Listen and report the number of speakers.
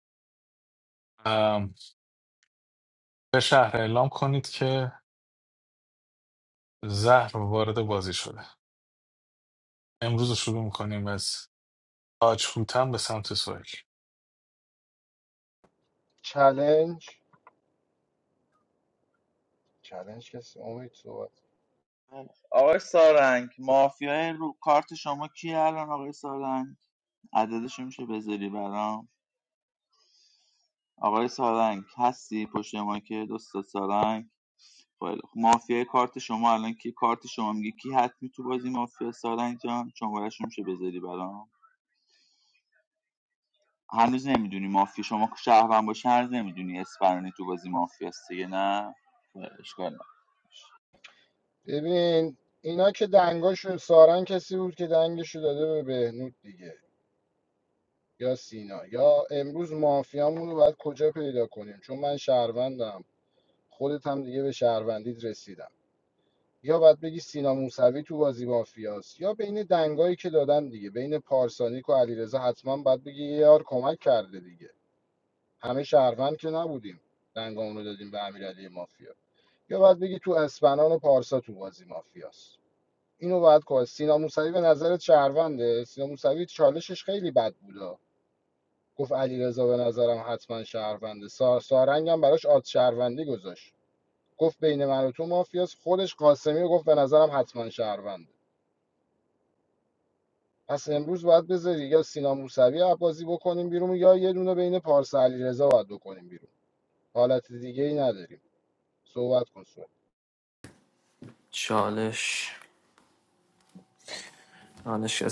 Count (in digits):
4